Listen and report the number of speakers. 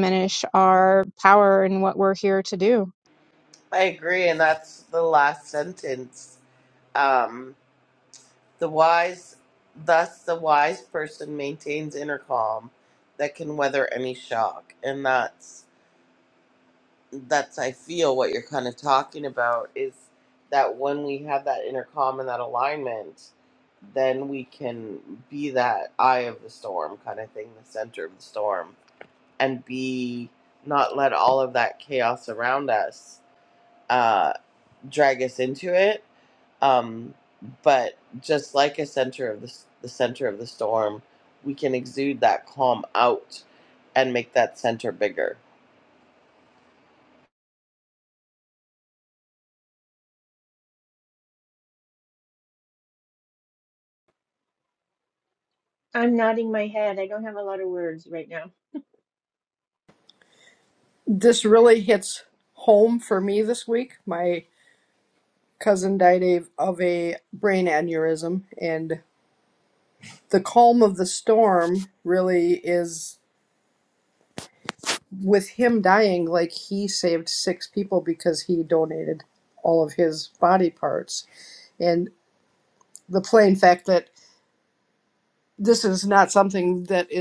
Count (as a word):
four